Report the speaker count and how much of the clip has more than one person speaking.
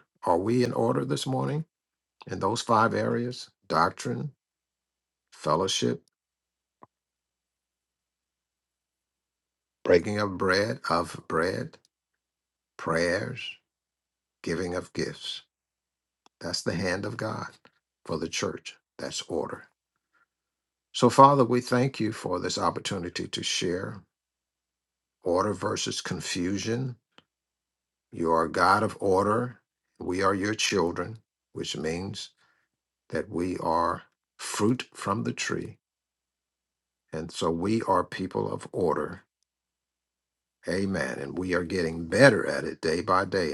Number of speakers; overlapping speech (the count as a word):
one, no overlap